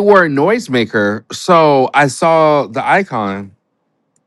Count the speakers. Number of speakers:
1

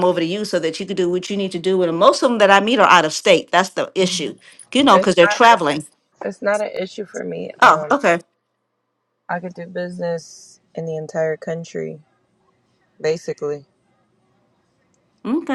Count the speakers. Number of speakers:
2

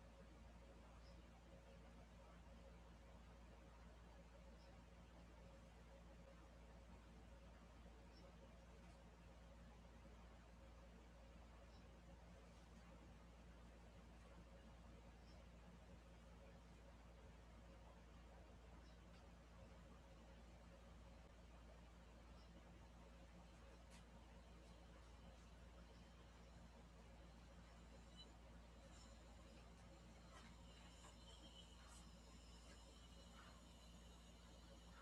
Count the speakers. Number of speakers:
0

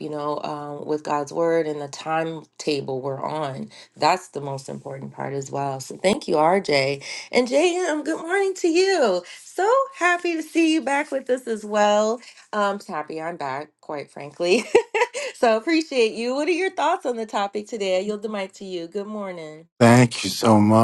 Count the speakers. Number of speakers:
2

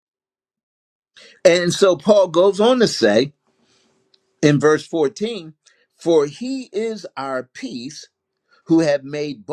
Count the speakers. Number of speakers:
1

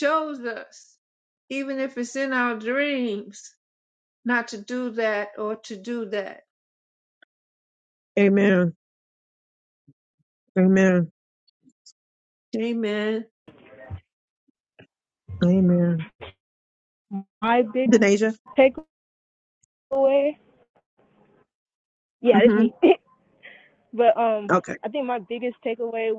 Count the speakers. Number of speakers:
3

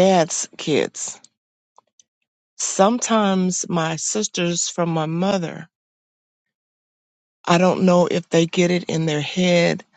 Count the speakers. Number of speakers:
1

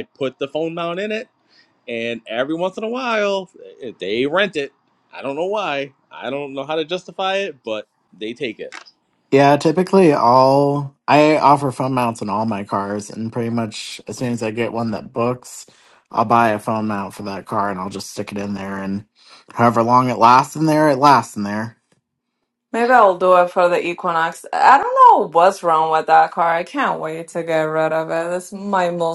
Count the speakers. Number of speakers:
3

